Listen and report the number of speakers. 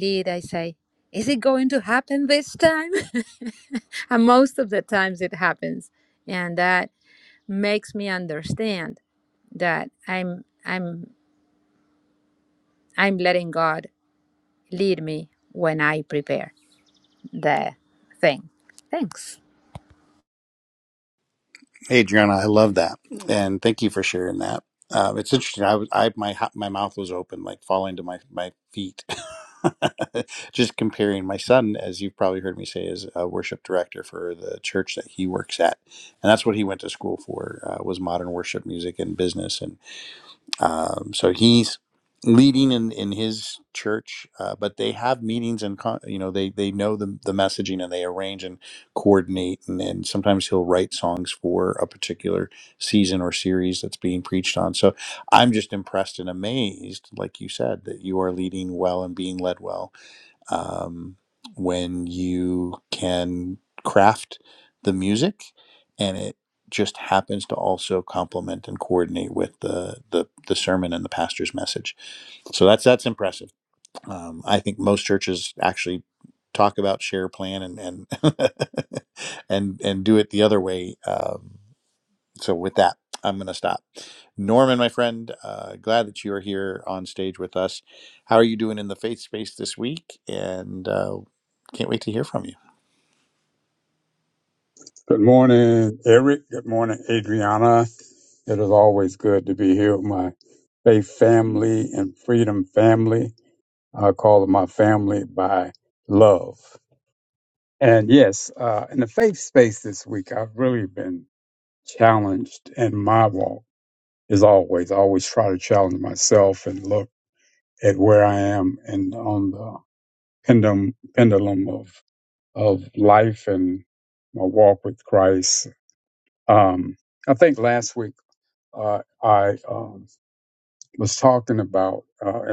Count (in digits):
3